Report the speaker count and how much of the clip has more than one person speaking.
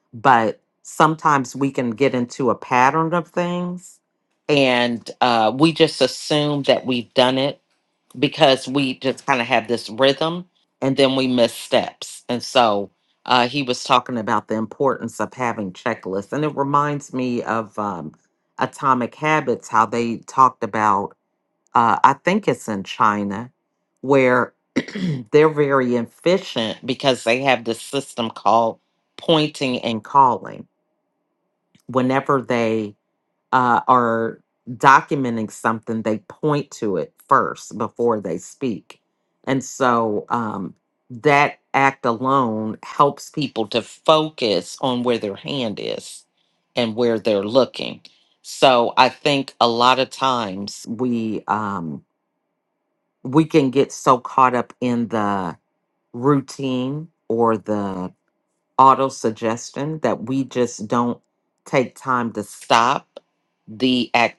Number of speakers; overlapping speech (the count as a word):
one, no overlap